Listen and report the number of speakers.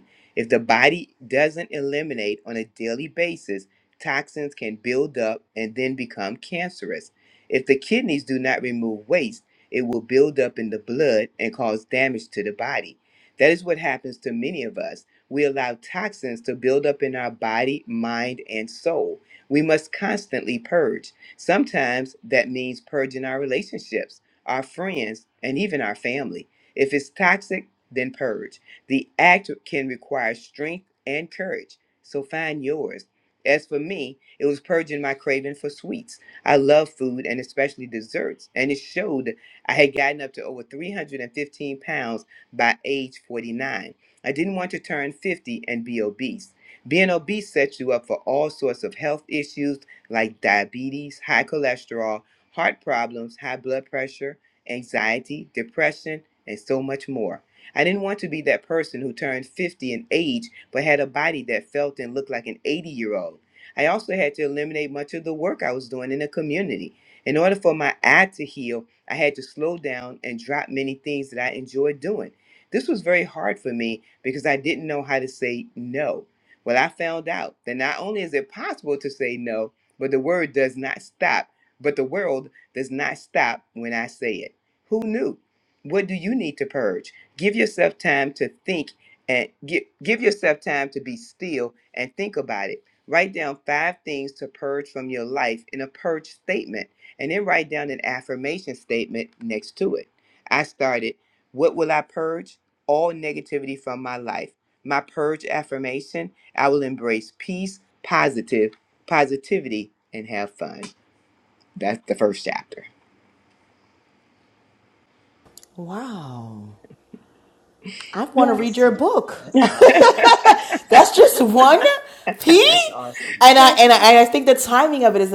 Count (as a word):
three